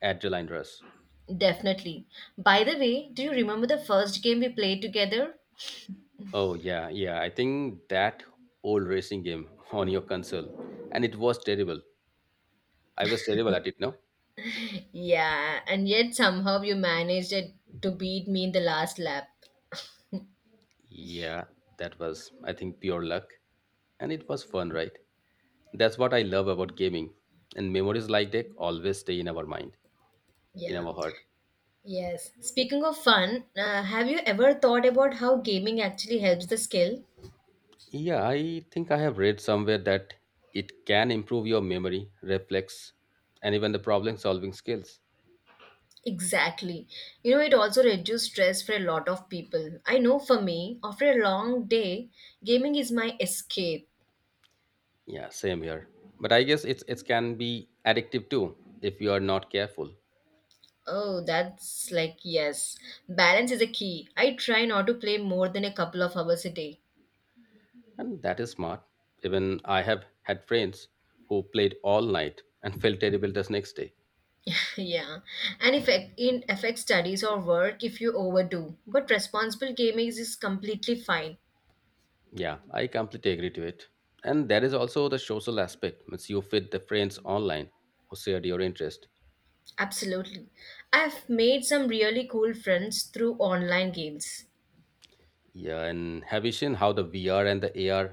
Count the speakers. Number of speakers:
2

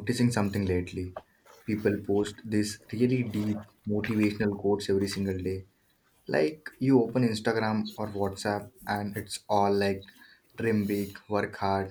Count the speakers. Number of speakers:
1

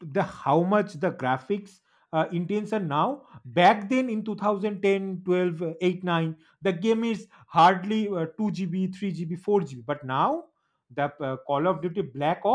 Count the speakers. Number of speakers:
1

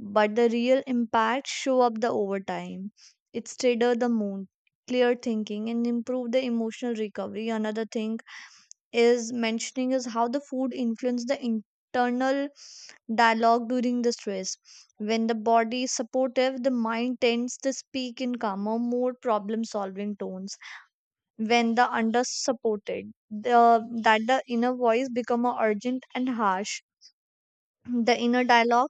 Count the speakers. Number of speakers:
1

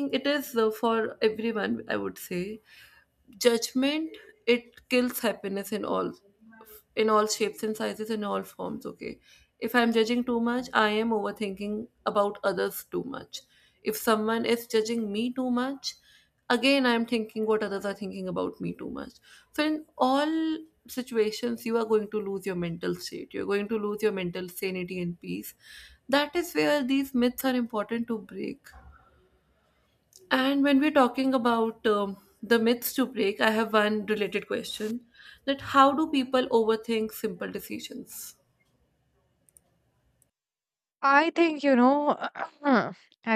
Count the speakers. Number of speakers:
2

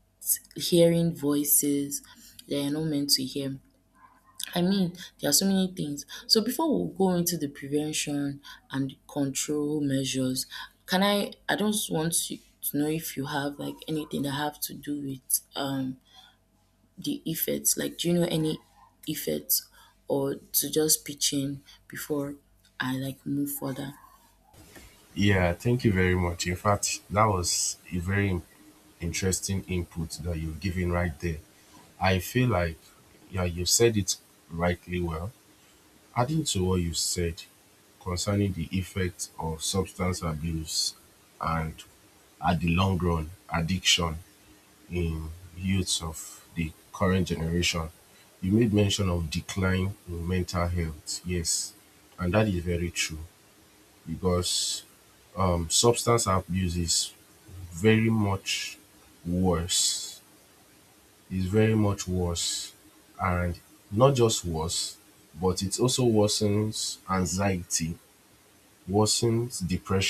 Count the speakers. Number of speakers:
2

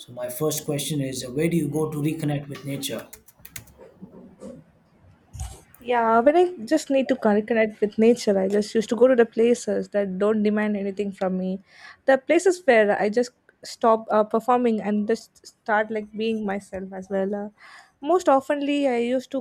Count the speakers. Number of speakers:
2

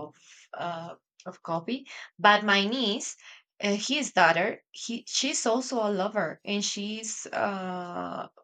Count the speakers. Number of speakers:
1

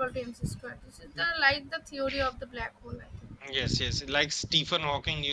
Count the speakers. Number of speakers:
2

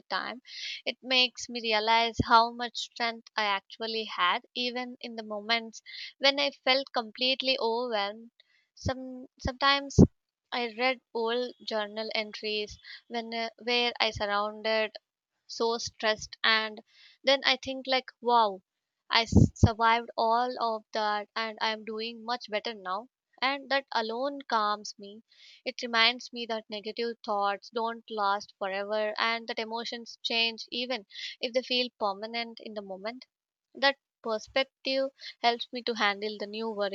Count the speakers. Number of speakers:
1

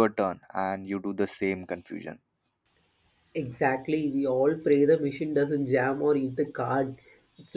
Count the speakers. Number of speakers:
2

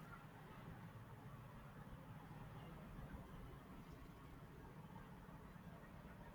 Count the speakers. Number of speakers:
0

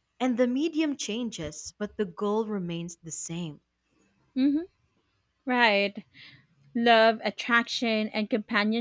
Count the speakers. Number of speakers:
2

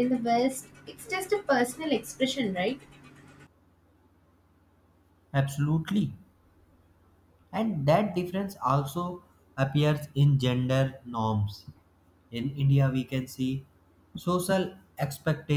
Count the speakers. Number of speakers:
2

